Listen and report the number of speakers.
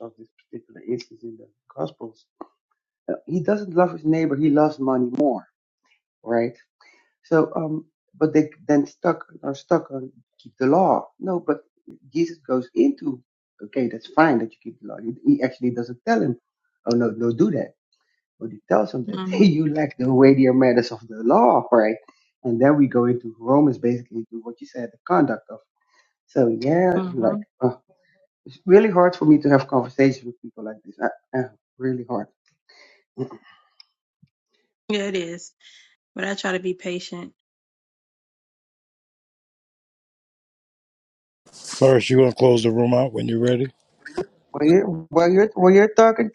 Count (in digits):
3